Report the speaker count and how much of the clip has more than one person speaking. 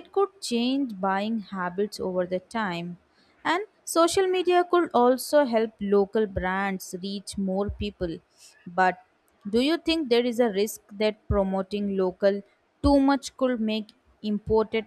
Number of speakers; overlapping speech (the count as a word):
one, no overlap